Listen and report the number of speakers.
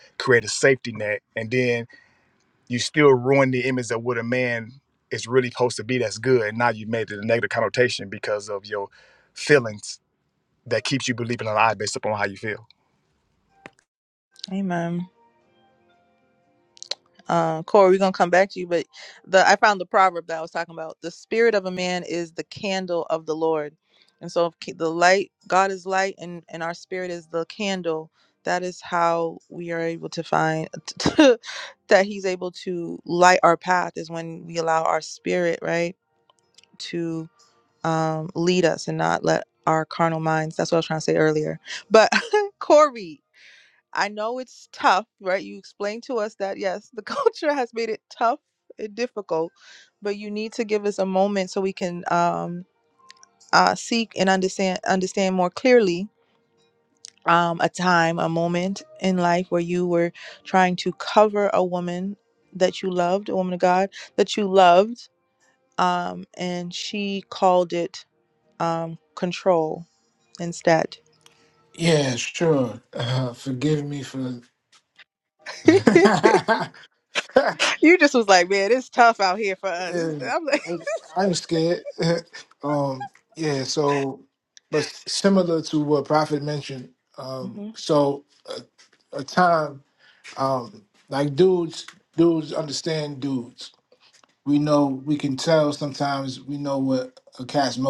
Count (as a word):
three